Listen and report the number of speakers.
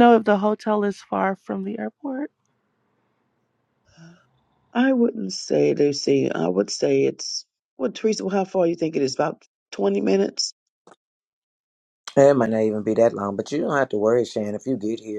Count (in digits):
3